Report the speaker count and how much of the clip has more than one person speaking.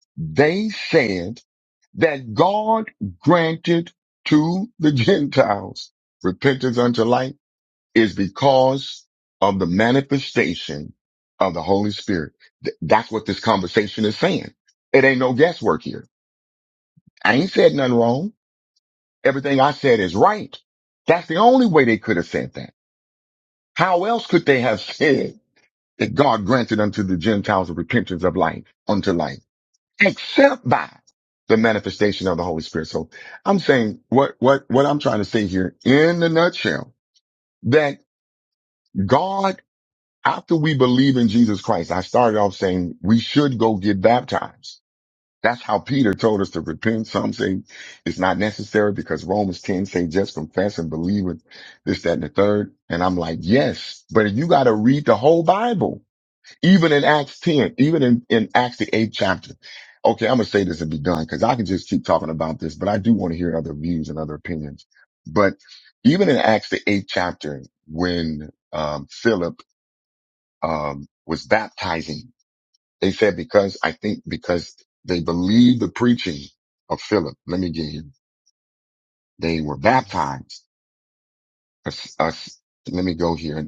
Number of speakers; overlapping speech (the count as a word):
one, no overlap